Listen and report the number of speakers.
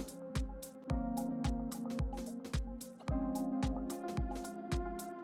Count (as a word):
zero